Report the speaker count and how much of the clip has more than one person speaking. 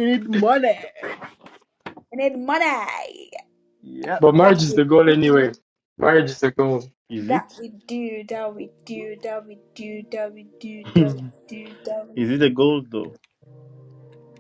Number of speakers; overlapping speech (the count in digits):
3, about 11%